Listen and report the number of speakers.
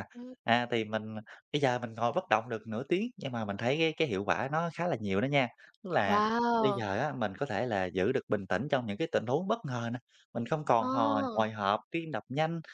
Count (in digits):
2